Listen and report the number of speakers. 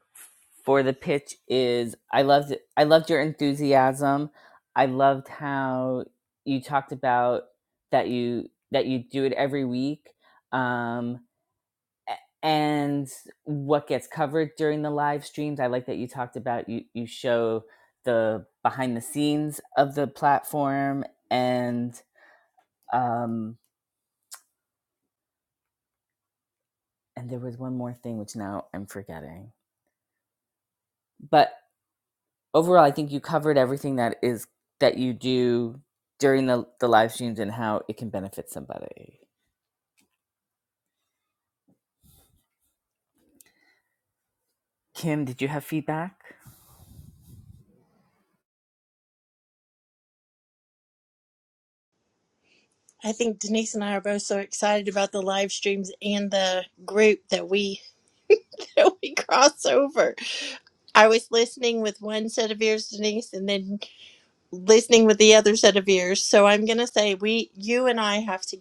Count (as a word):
two